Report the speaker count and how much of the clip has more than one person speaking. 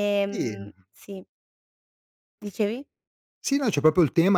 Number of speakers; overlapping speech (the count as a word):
two, about 8%